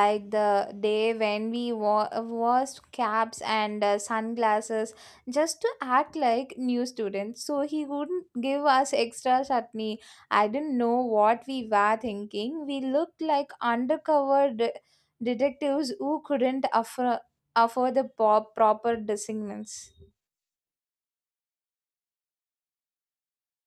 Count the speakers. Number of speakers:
1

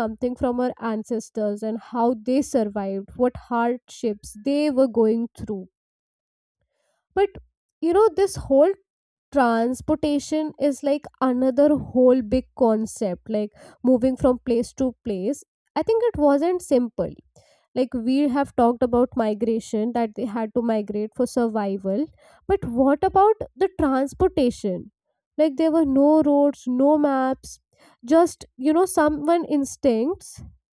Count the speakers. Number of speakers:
1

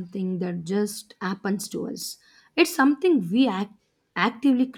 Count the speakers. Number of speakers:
1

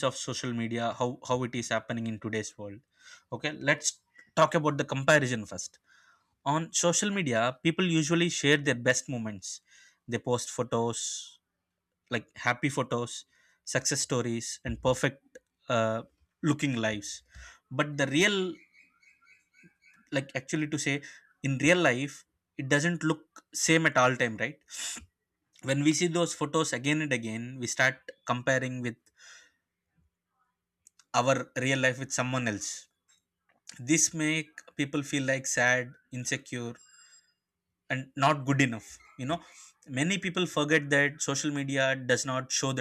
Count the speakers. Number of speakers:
1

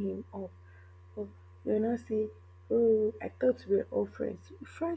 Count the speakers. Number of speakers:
1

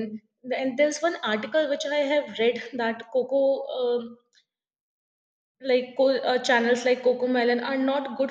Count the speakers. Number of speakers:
1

